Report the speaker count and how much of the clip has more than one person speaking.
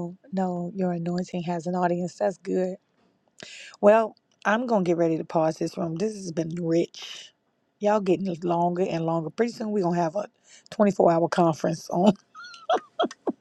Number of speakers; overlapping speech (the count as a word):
one, no overlap